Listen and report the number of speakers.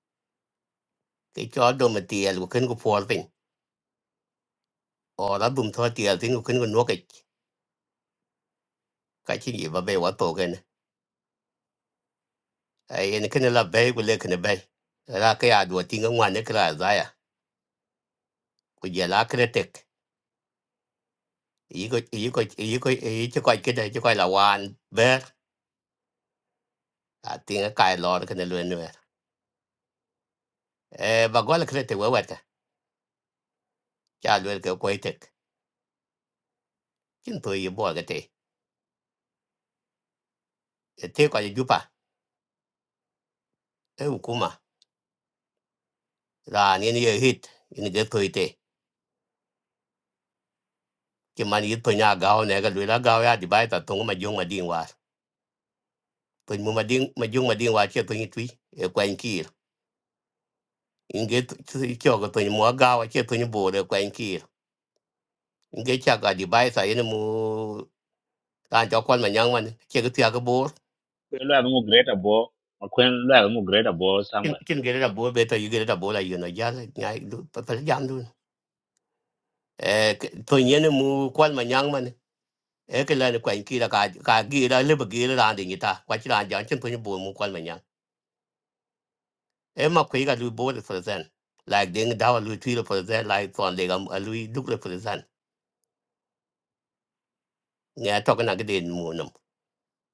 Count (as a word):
two